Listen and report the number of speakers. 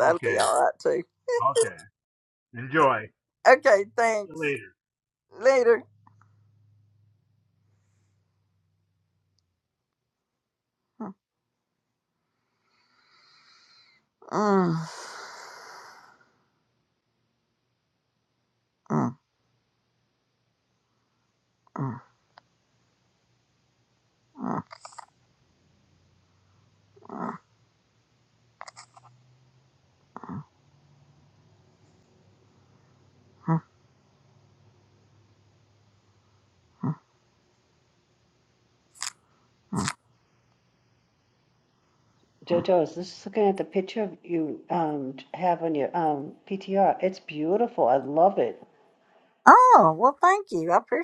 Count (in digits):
3